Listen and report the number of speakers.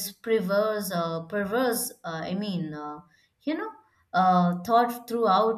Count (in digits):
1